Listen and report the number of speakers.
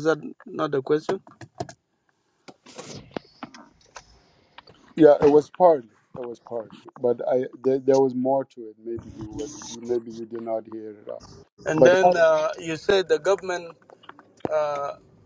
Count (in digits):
2